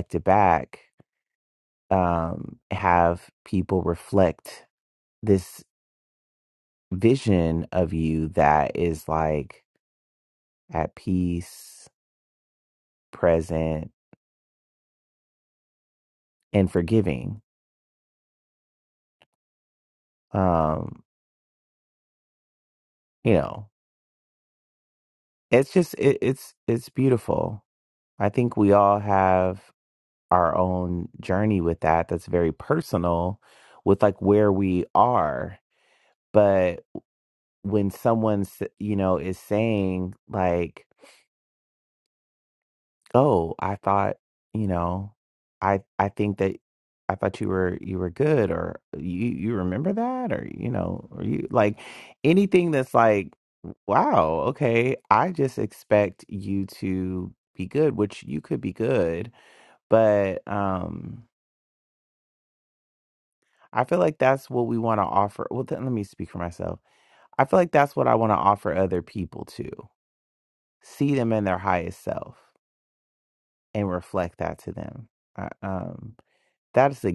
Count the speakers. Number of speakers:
one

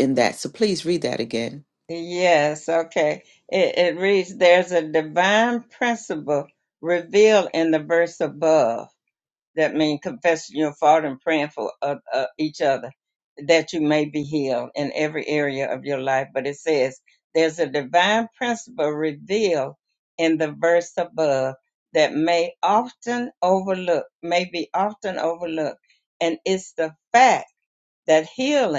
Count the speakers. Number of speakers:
two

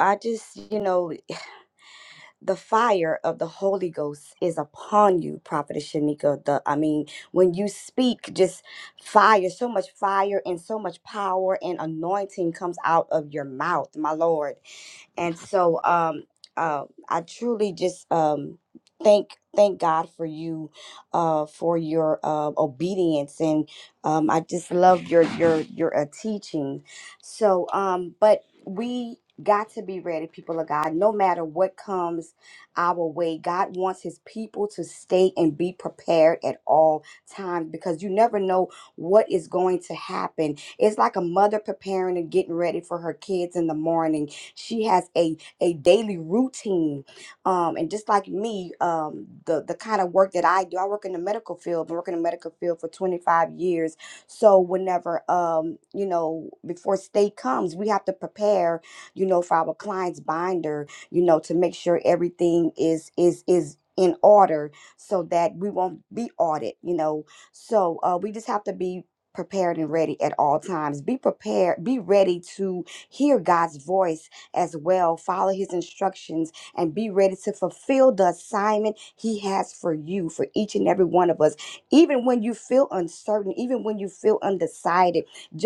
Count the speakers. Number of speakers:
one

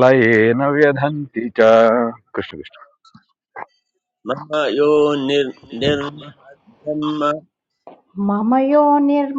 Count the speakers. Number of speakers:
three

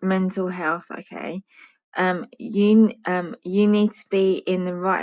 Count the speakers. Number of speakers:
one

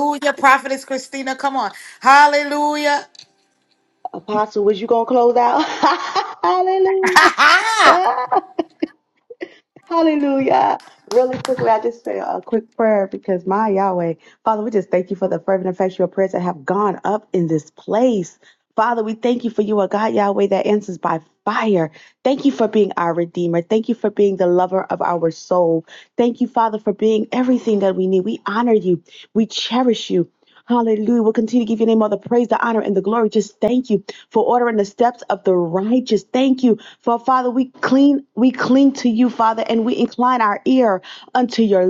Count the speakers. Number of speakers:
two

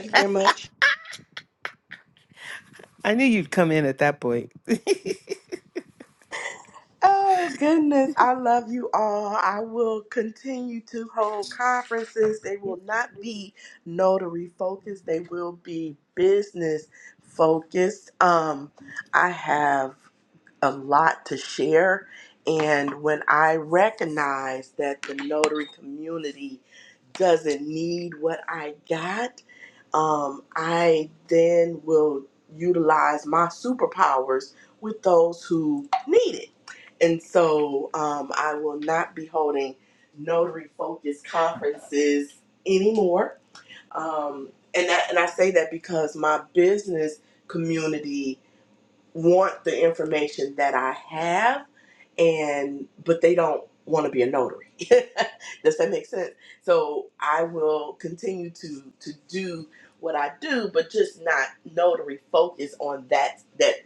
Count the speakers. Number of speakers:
two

